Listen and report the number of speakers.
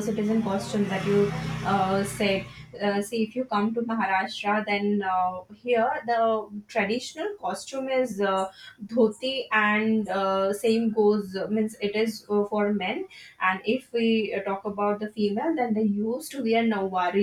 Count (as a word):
one